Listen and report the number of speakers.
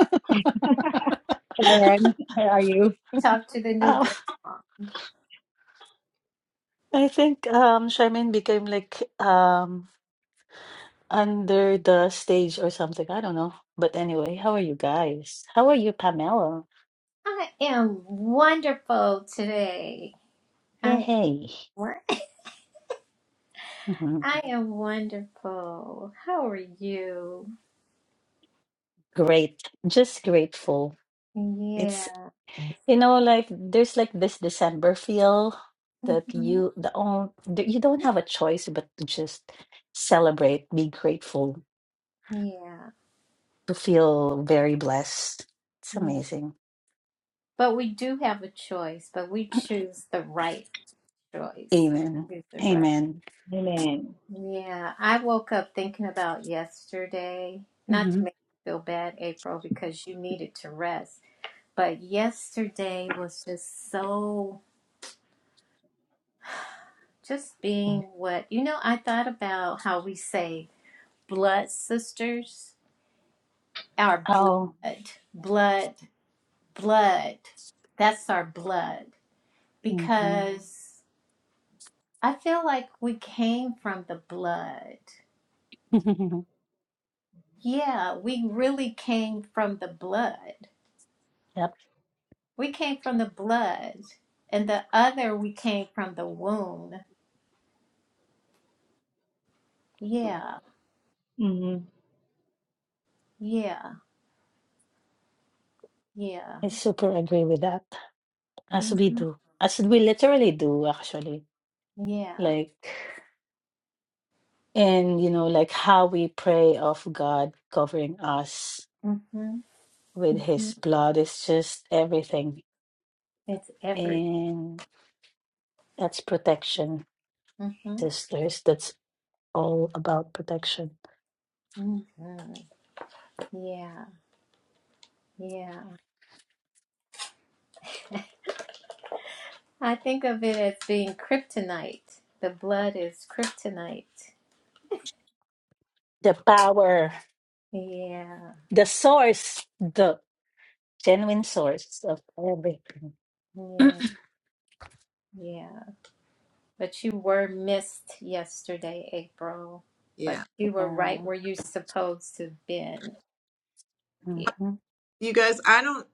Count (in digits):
4